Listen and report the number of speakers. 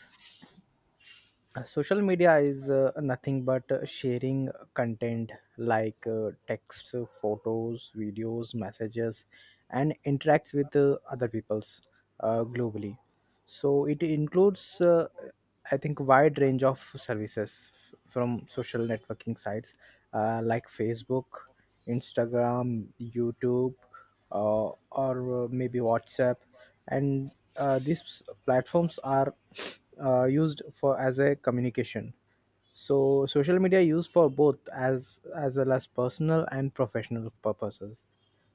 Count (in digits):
1